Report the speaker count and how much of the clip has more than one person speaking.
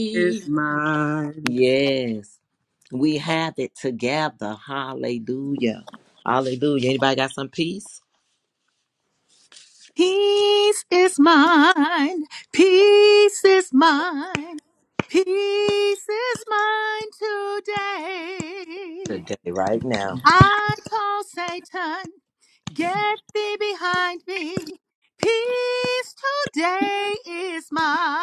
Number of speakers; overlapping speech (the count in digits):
3, under 1%